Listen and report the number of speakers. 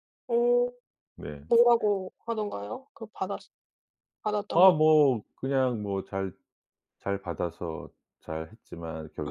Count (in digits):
2